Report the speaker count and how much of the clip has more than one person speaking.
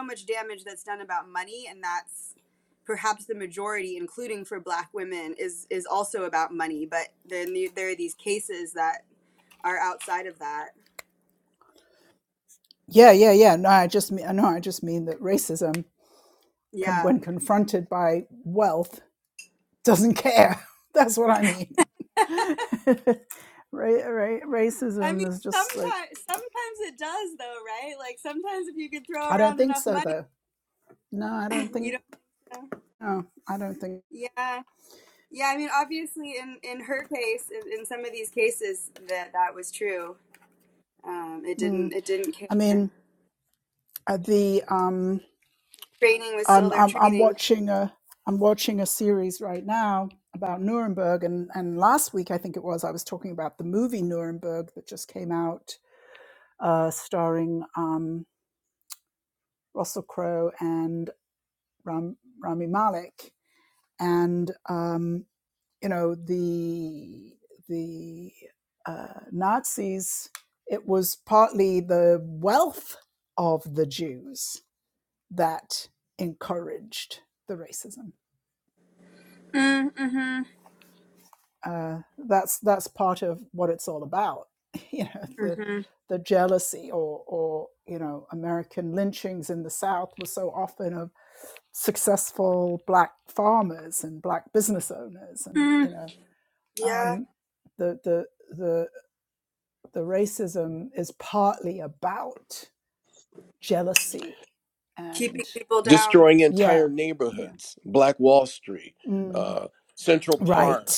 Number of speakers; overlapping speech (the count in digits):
3, about 6%